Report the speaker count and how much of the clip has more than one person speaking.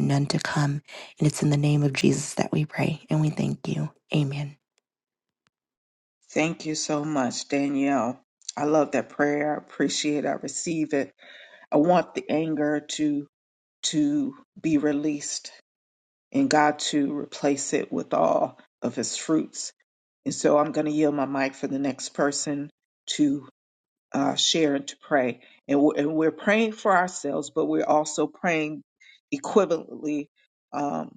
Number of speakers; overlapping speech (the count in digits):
2, no overlap